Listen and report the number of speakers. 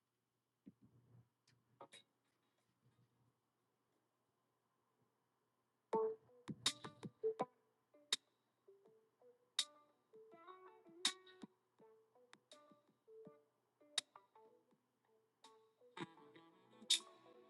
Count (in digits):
0